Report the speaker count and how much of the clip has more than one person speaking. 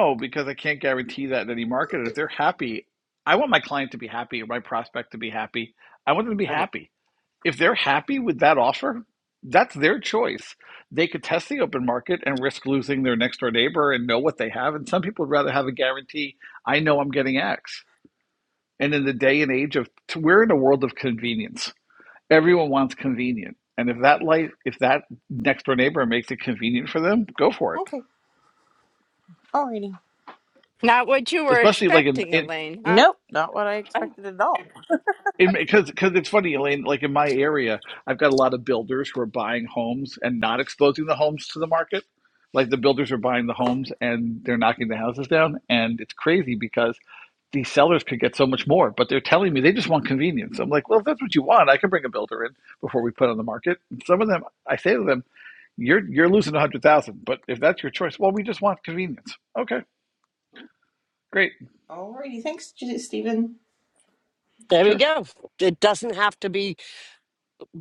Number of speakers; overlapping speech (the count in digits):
4, about 3%